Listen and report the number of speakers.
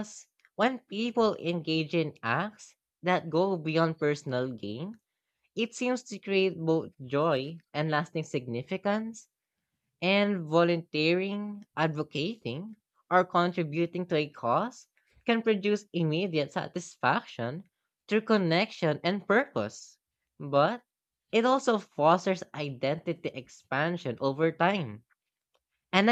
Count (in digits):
1